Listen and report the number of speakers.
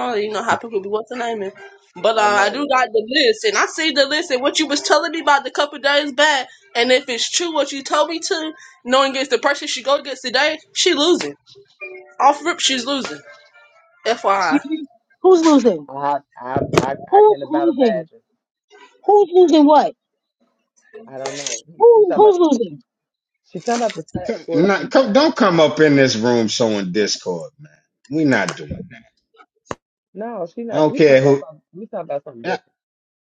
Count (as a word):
four